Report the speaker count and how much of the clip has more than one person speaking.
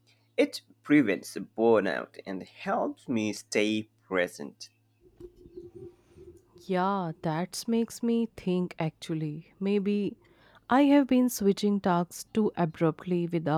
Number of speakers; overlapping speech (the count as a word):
two, no overlap